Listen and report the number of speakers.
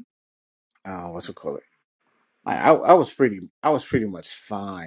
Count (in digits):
1